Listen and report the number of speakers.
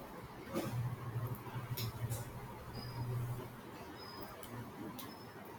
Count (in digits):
0